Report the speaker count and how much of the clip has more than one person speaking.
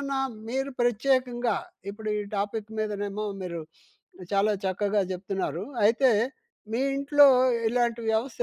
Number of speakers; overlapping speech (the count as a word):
one, no overlap